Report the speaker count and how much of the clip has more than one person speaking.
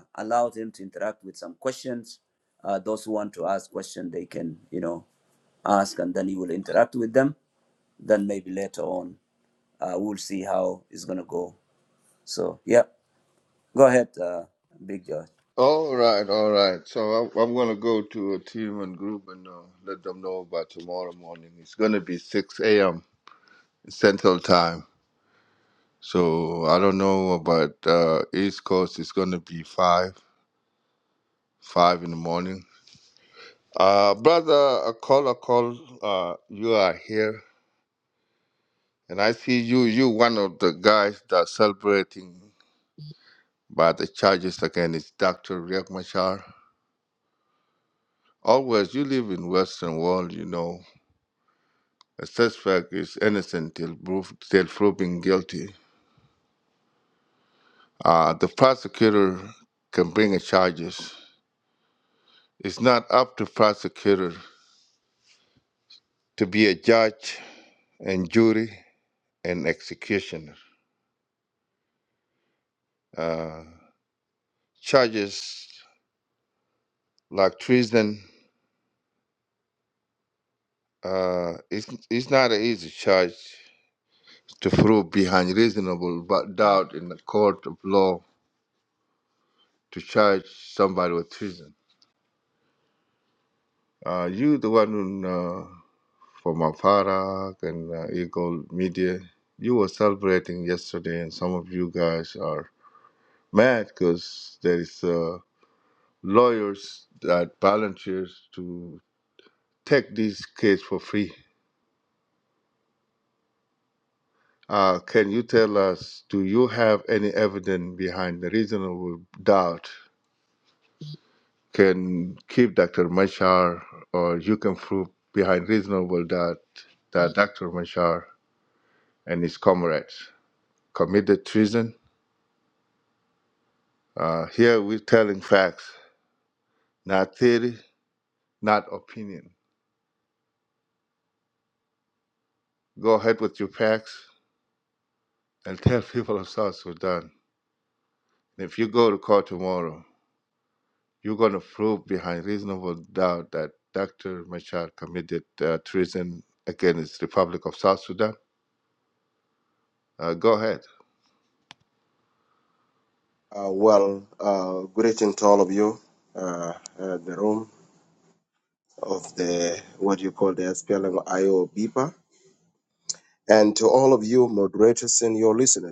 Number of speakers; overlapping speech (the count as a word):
three, no overlap